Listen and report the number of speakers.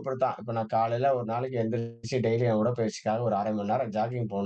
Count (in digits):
1